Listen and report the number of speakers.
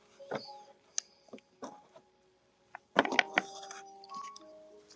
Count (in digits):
0